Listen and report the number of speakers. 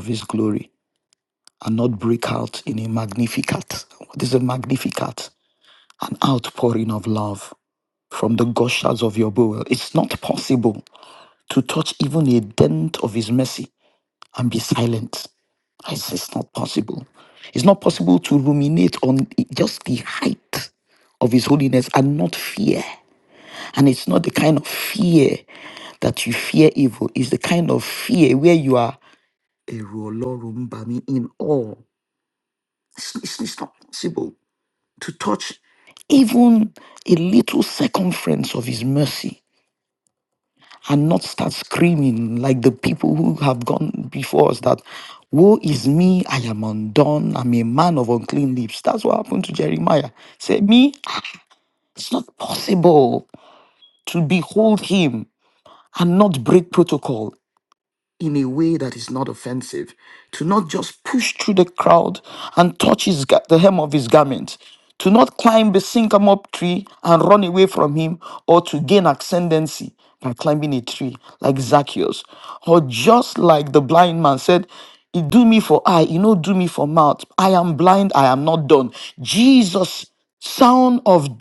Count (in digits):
1